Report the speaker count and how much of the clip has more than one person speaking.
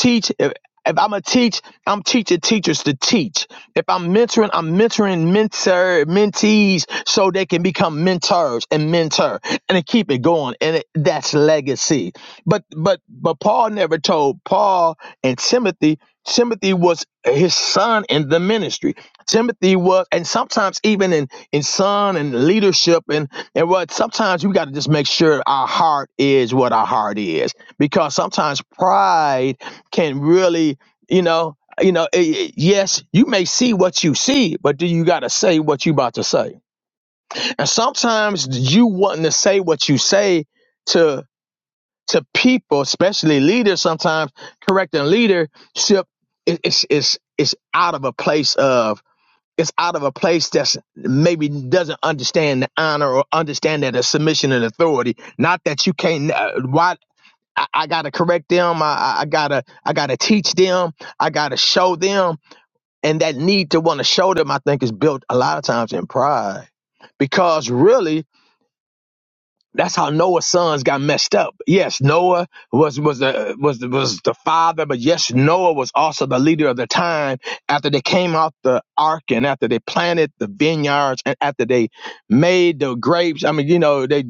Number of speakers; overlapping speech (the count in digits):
1, no overlap